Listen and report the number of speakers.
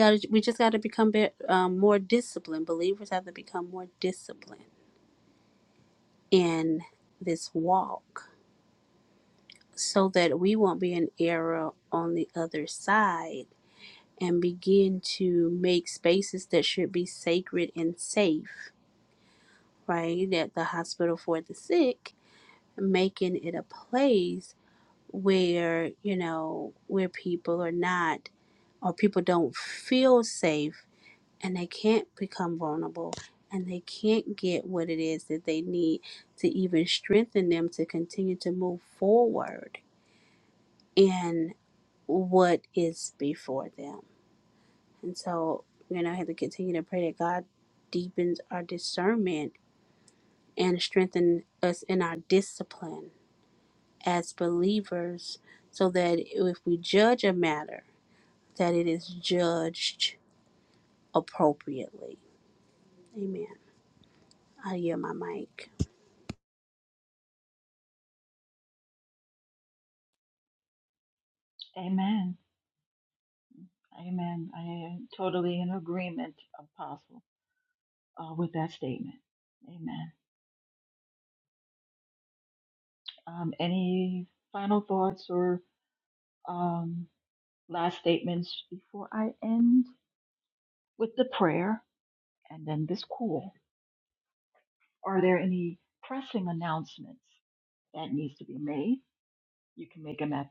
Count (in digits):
2